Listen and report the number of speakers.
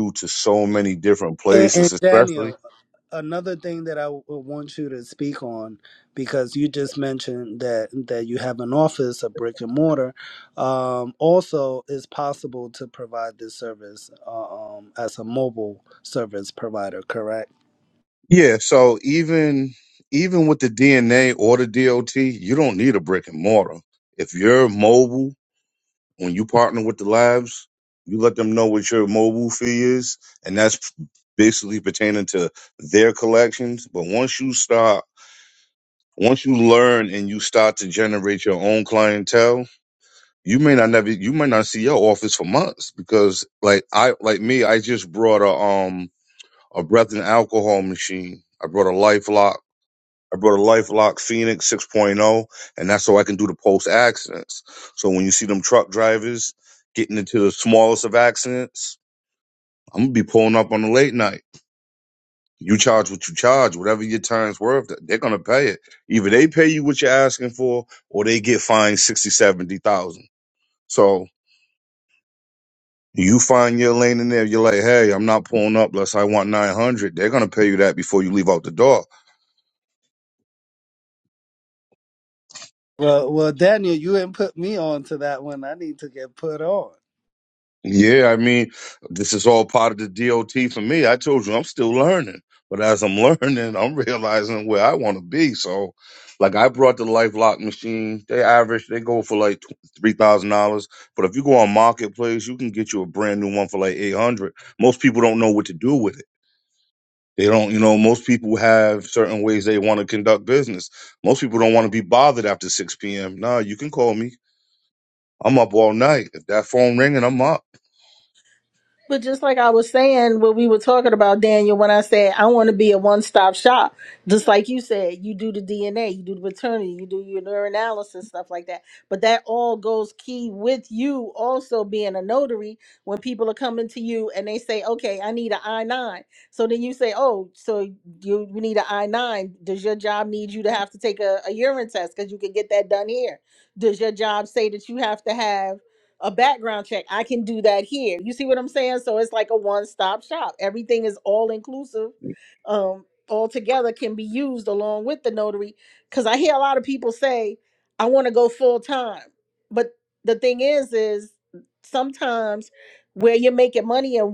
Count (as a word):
three